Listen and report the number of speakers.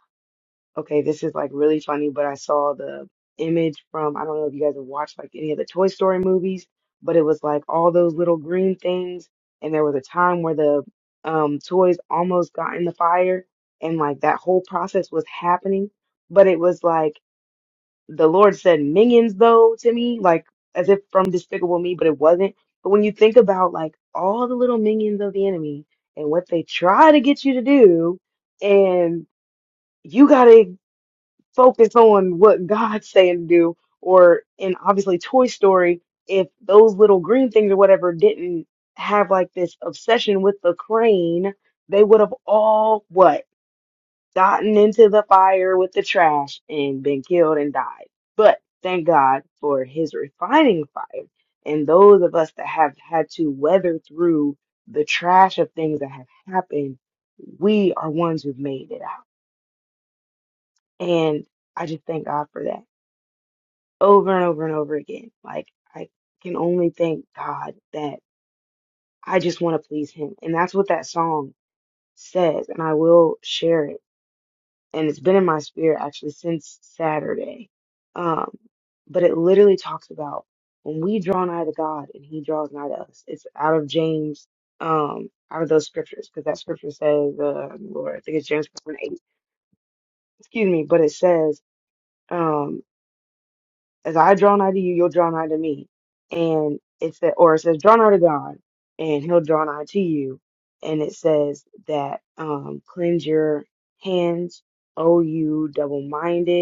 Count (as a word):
one